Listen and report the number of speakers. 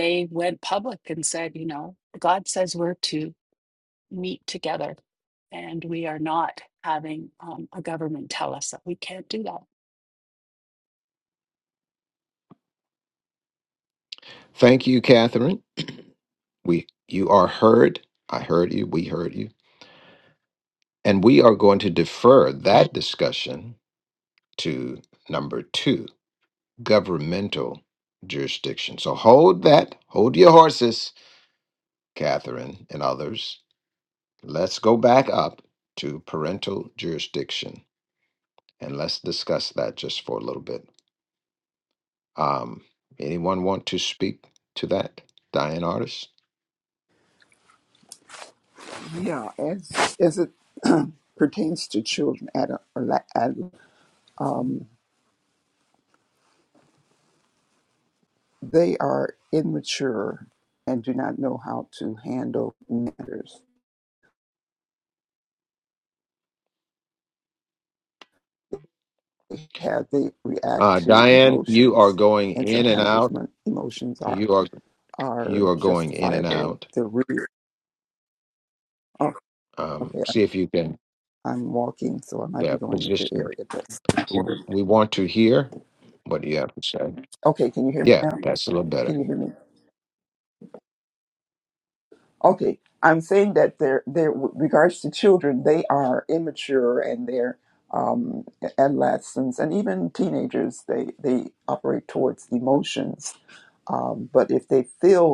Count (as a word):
three